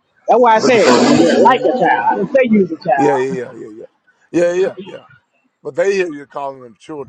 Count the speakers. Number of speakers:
two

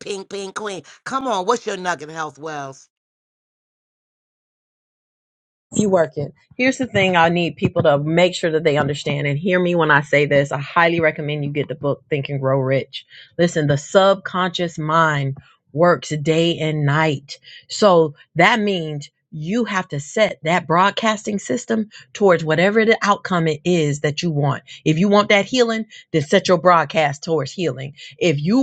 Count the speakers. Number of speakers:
two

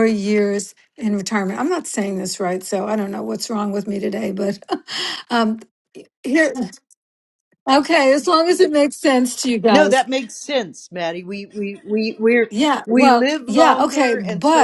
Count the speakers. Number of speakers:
two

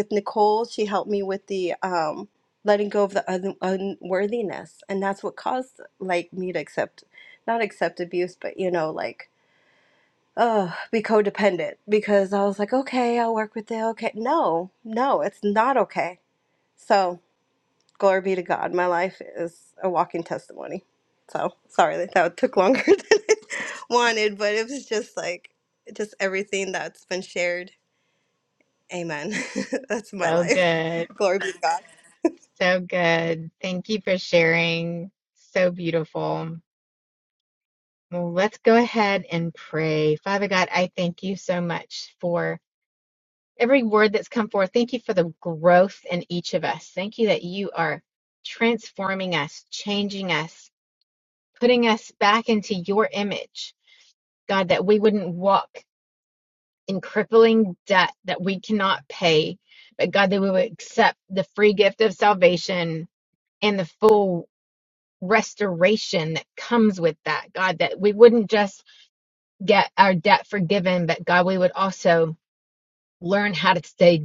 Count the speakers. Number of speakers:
two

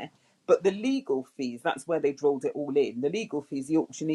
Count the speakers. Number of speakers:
one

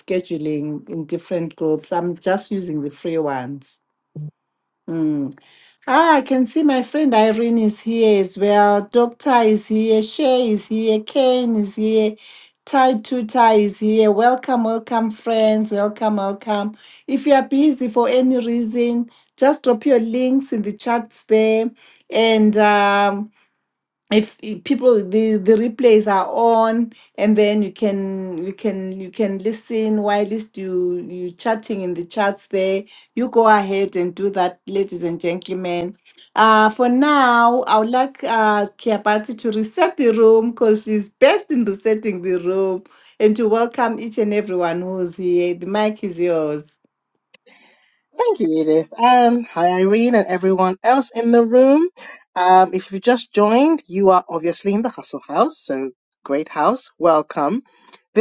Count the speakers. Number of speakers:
two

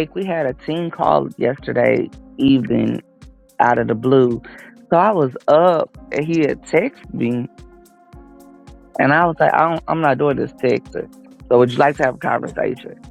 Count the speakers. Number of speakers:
one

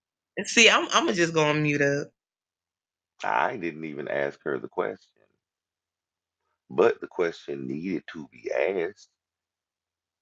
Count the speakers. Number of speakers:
two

